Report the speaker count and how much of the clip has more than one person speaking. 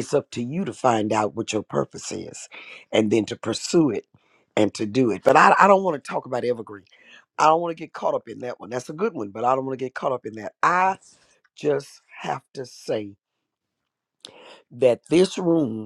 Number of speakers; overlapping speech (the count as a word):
one, no overlap